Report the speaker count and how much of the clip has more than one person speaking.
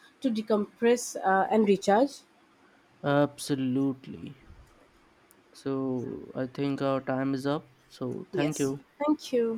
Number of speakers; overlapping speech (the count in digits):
2, about 2%